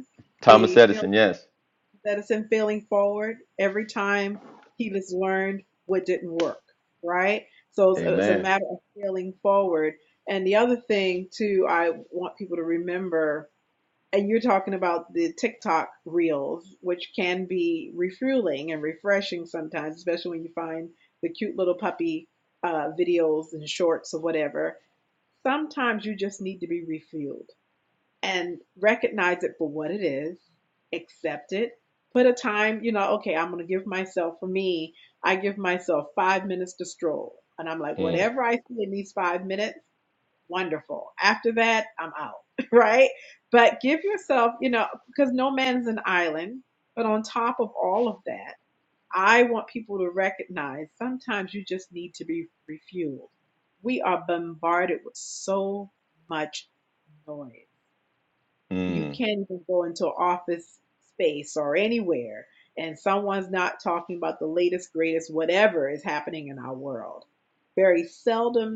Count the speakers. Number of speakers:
2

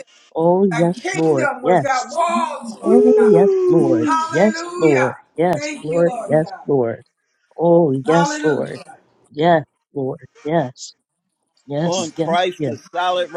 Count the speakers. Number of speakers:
3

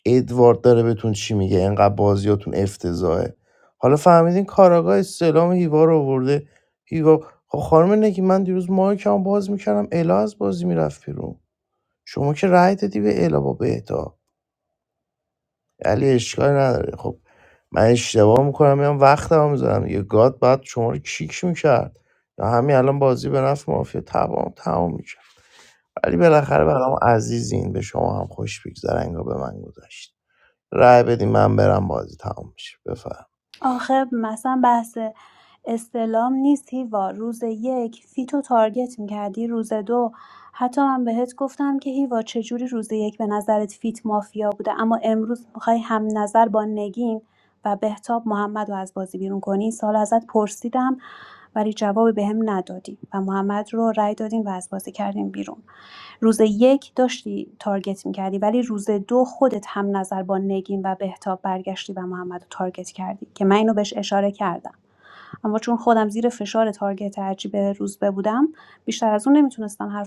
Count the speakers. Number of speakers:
2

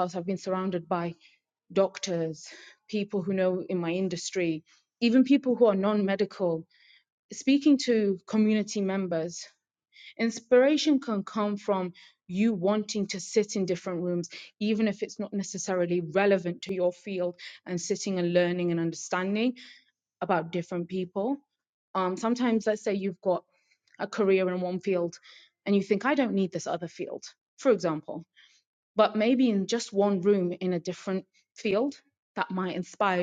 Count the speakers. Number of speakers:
1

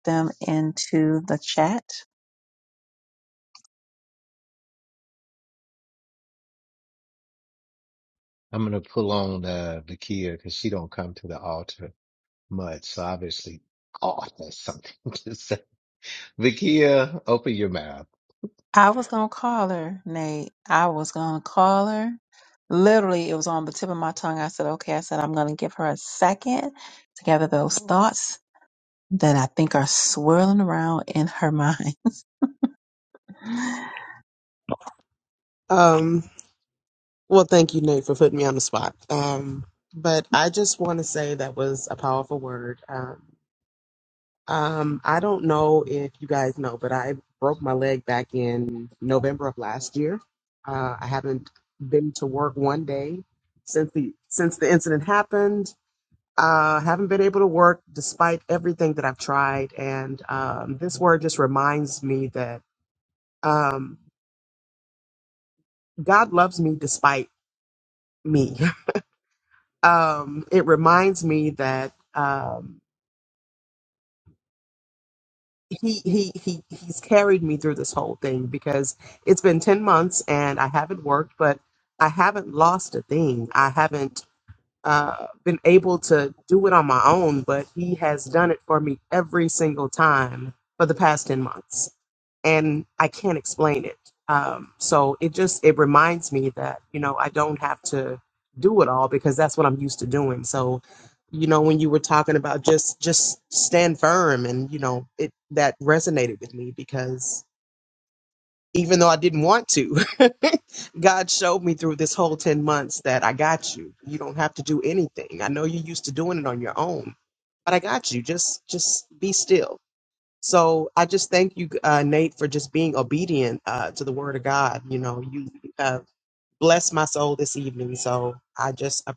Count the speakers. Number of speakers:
3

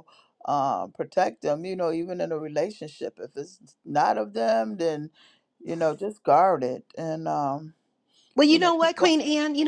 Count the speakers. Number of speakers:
2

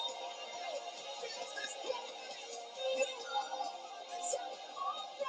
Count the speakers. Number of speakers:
0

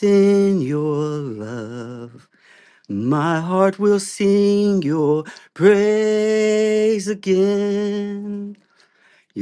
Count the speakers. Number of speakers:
1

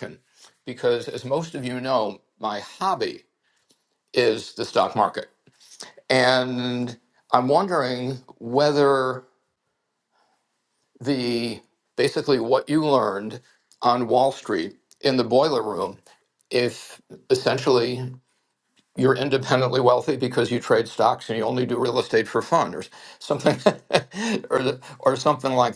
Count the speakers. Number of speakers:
1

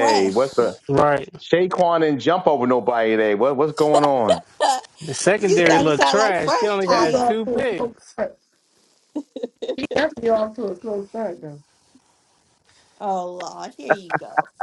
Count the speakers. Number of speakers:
4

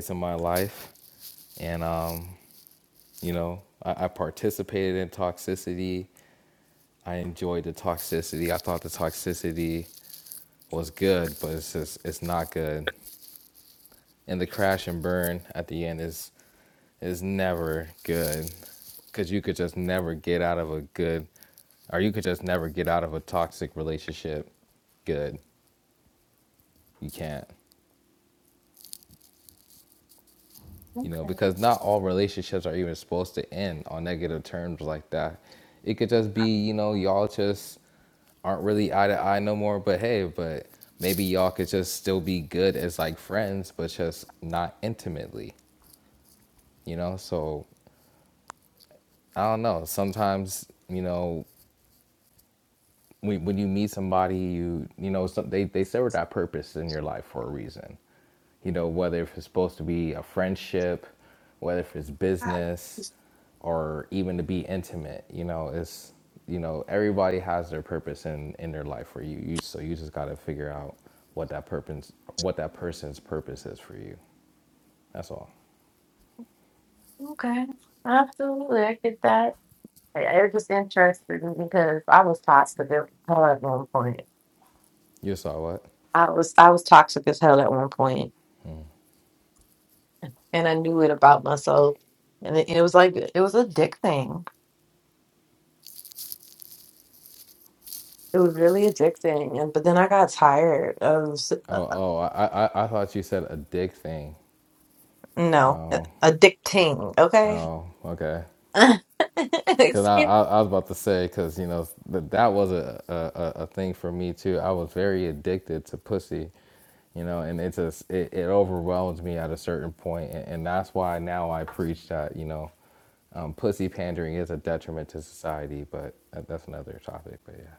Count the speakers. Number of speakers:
2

